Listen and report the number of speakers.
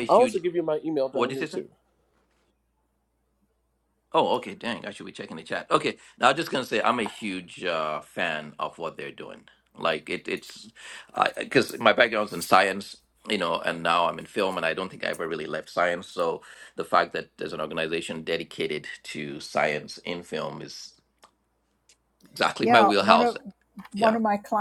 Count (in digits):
3